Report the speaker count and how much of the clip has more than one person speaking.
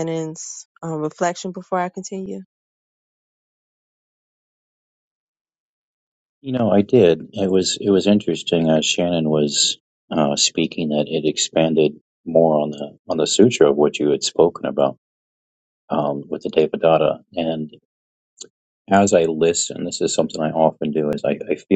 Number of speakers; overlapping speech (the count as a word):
two, no overlap